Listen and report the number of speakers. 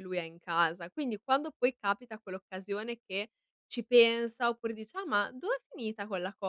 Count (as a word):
one